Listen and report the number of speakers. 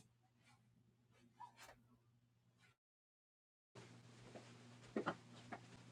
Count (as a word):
zero